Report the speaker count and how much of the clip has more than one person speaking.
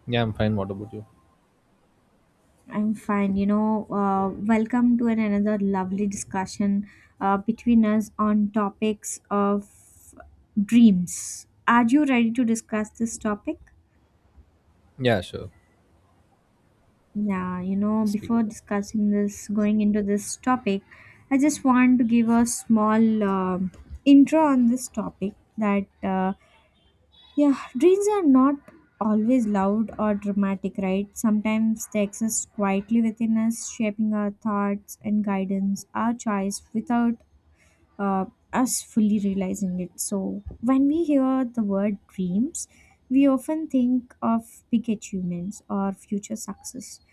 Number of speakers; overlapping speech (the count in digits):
2, about 1%